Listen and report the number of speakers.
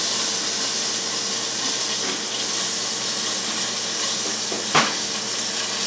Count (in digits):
0